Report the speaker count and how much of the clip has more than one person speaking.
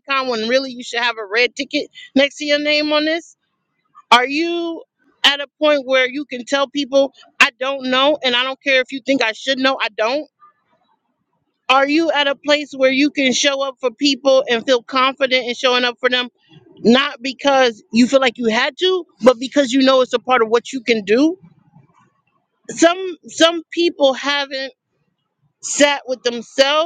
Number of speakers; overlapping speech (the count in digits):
1, no overlap